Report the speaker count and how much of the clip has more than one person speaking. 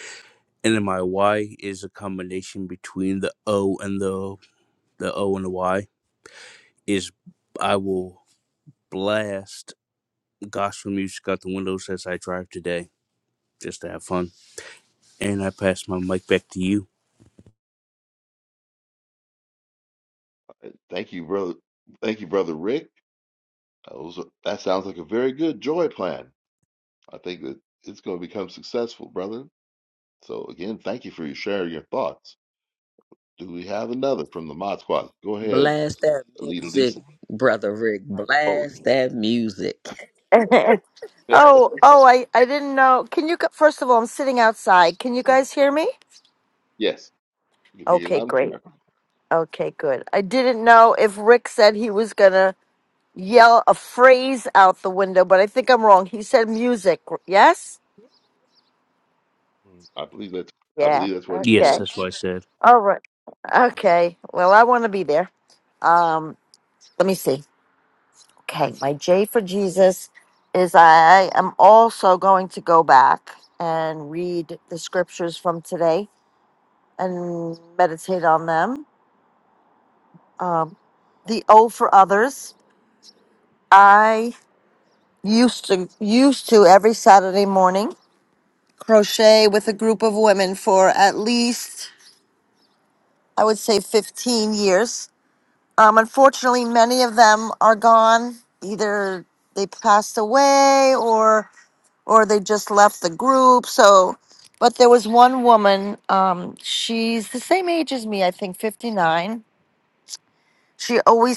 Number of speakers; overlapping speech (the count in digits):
4, about 3%